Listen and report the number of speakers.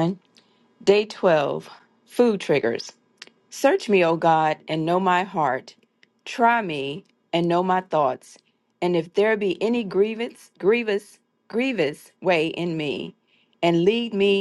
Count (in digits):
1